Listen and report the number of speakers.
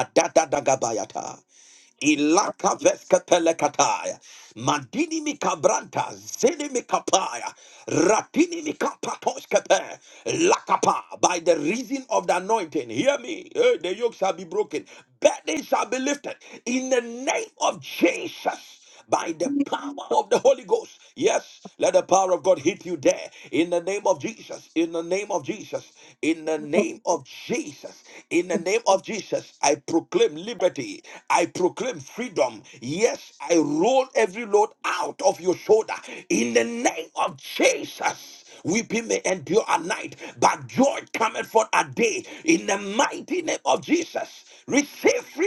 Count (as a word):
one